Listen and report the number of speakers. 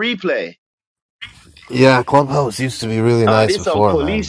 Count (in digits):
2